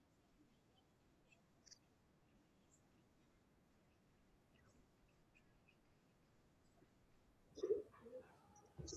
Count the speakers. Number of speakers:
zero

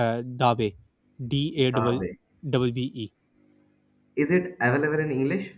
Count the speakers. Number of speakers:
two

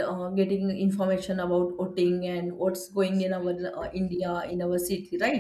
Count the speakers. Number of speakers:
one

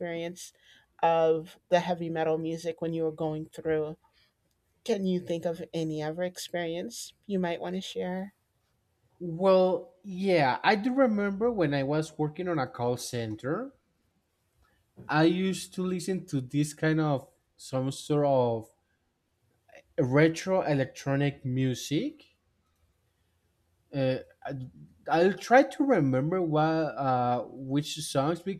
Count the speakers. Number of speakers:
two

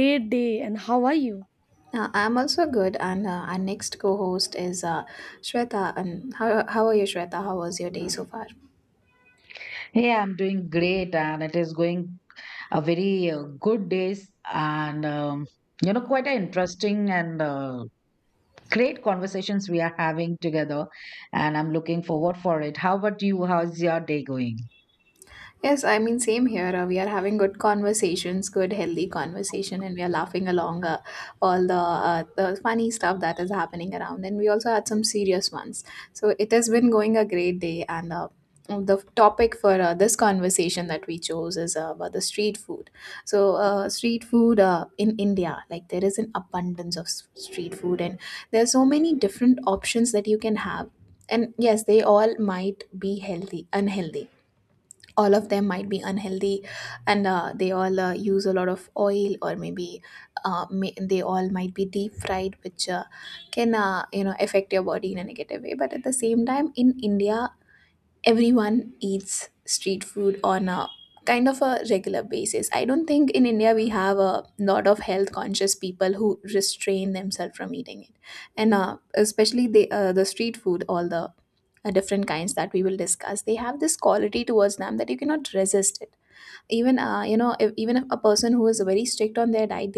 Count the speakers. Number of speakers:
three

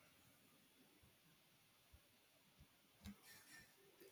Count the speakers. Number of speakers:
zero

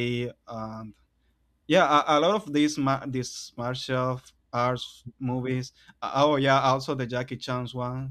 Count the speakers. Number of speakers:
one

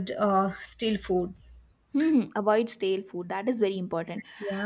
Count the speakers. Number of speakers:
two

